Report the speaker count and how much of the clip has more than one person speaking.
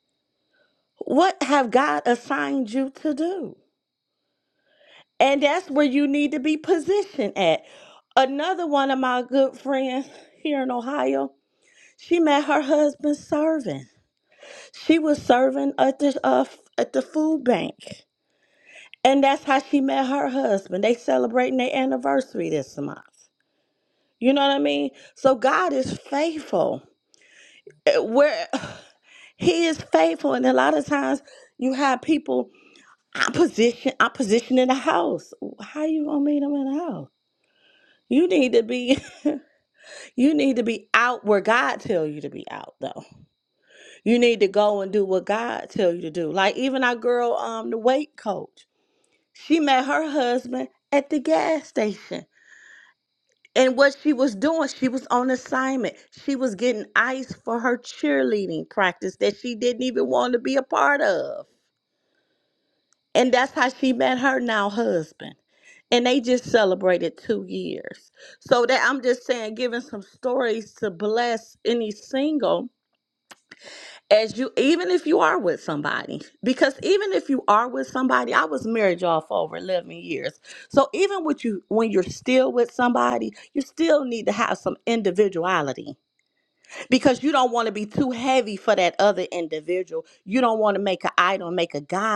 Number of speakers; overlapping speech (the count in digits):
1, no overlap